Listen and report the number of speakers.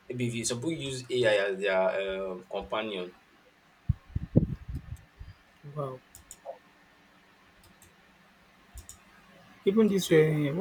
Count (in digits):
2